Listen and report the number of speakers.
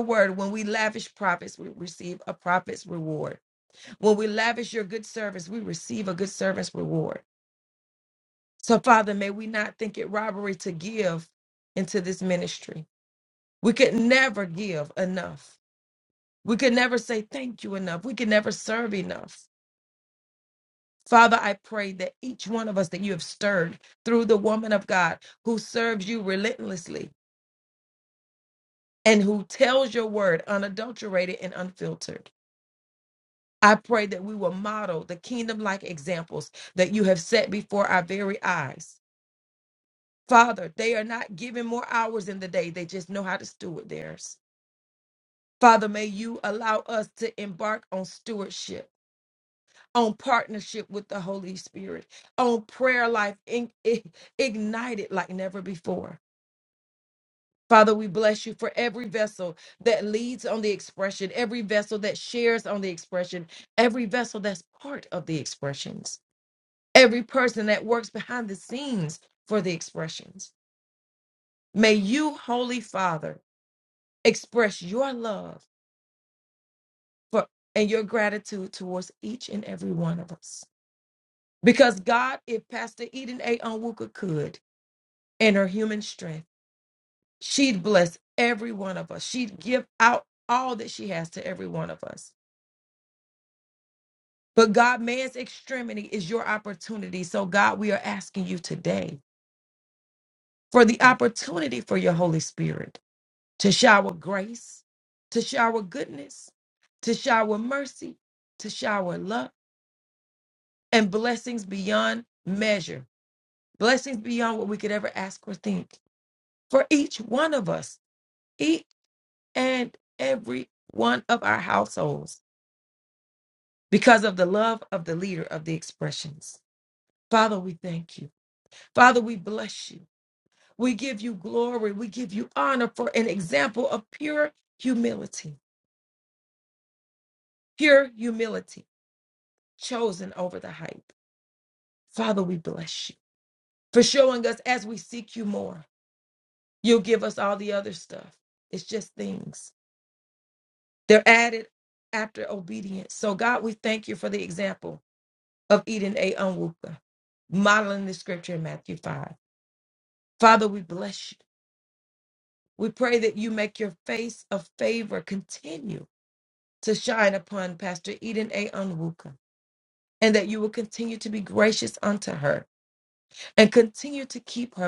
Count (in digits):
1